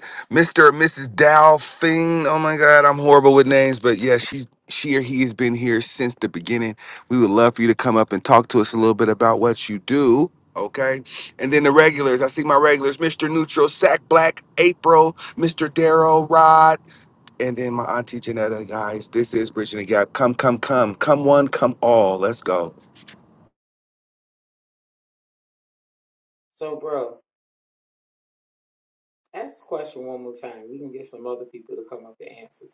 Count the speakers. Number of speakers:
two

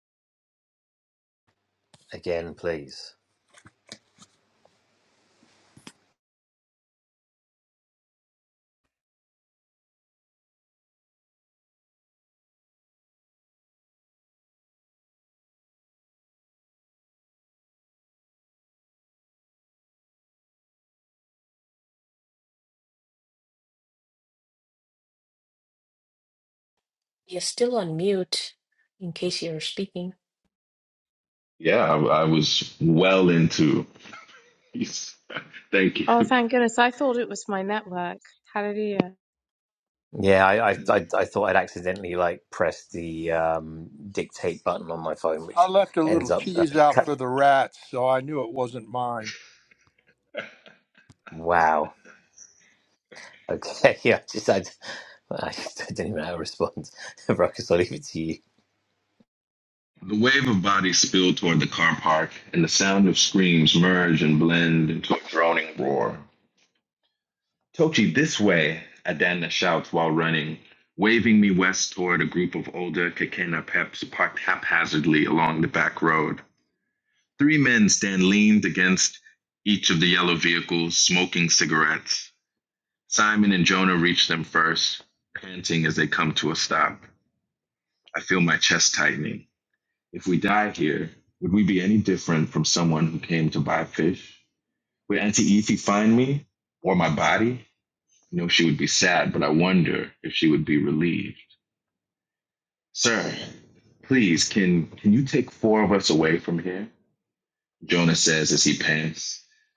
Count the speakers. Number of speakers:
five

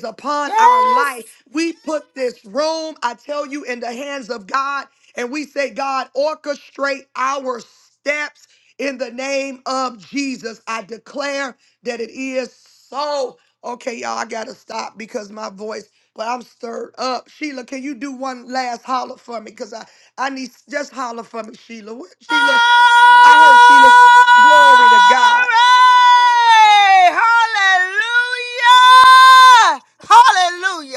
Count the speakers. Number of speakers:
two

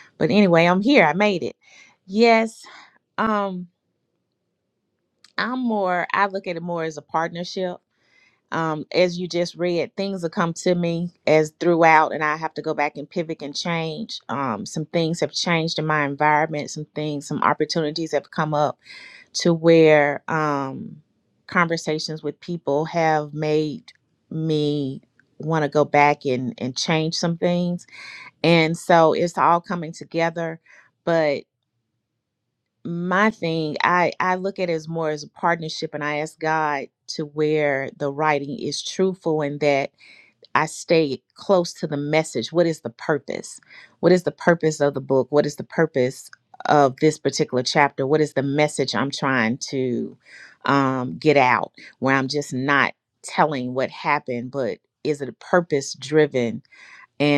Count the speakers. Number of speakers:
one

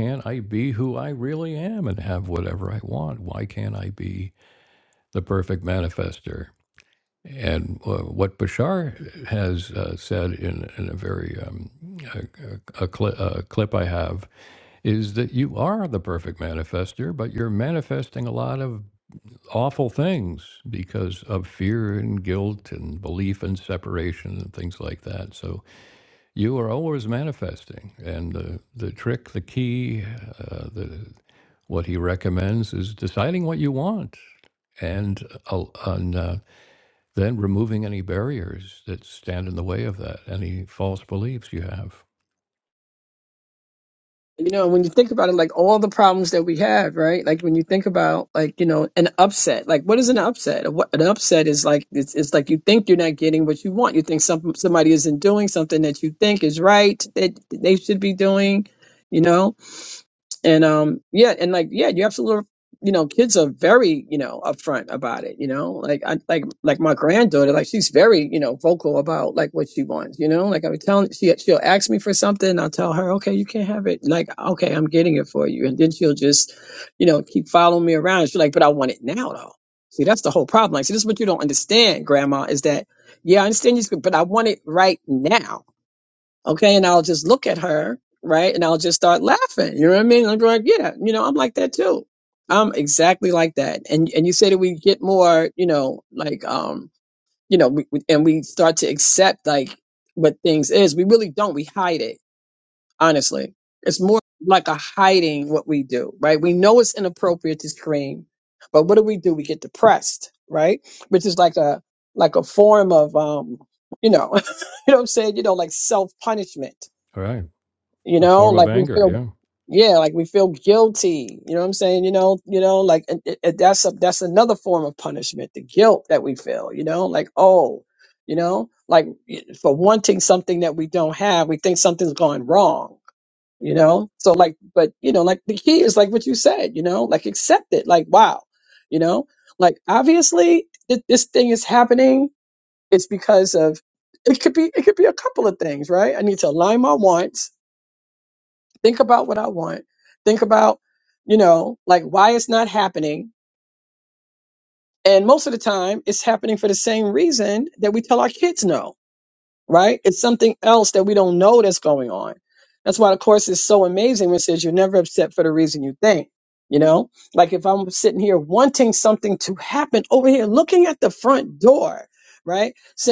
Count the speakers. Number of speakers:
two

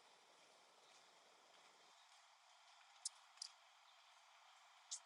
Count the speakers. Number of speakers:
zero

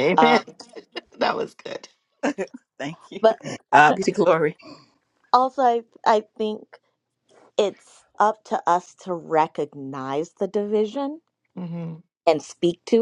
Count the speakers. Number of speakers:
three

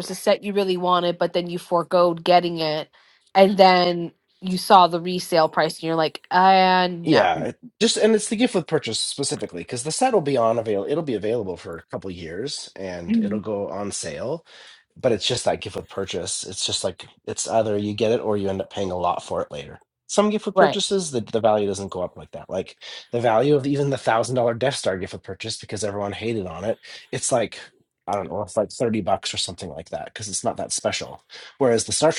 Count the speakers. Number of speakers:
two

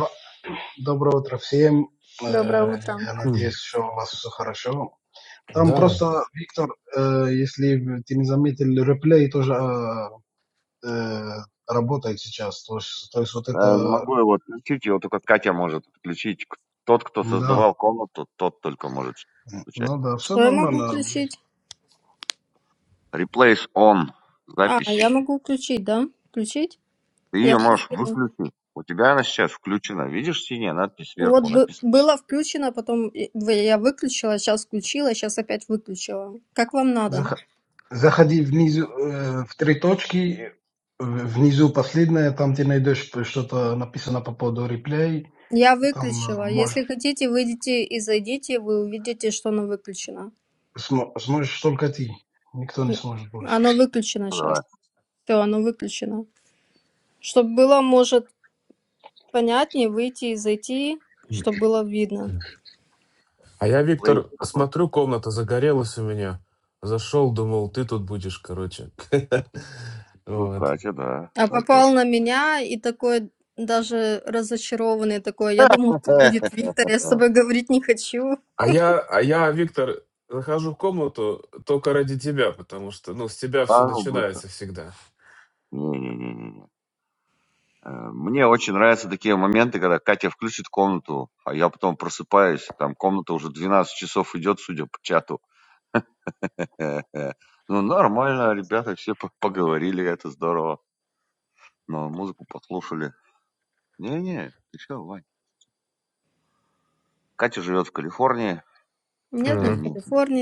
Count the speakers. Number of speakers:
four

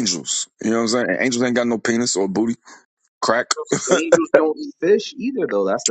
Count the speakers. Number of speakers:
two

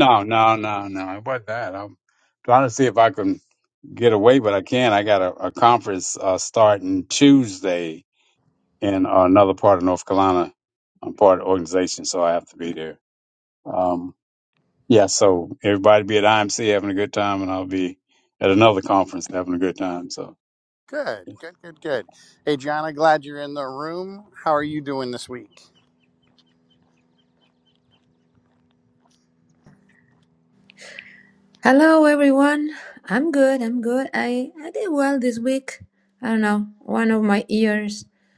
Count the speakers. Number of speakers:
three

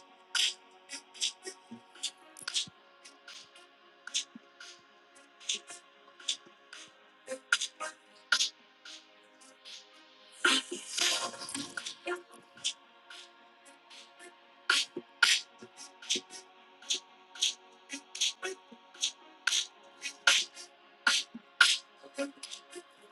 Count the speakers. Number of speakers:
zero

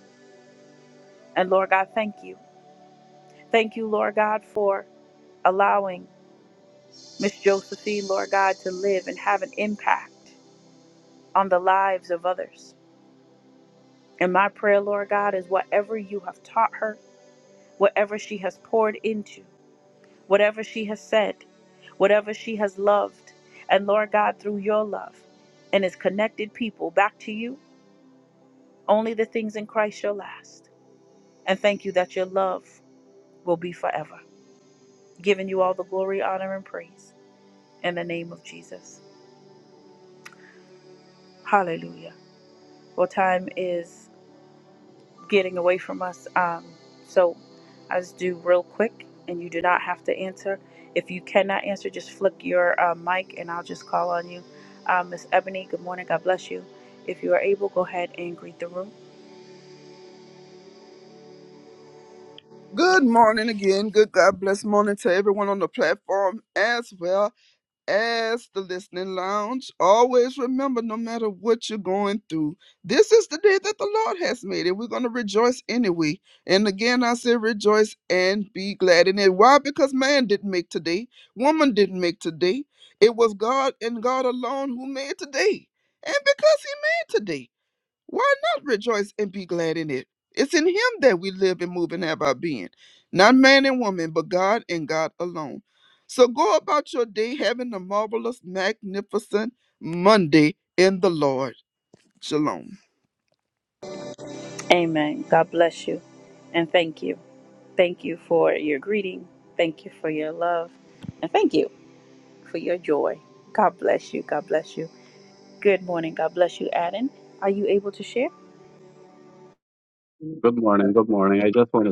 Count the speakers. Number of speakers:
three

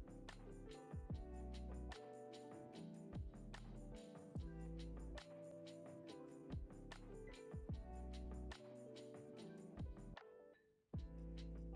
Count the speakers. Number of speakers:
zero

